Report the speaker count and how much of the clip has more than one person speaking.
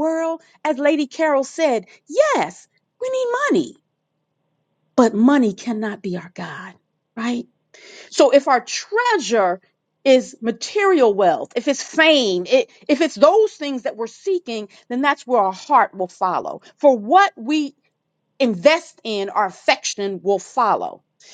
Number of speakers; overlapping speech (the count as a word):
one, no overlap